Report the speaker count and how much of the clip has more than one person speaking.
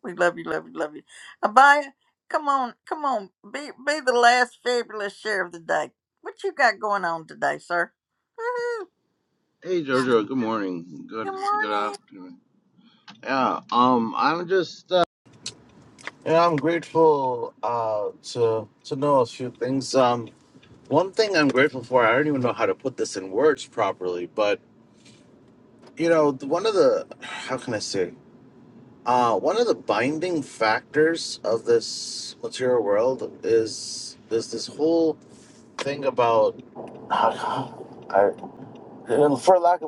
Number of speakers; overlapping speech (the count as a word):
two, about 2%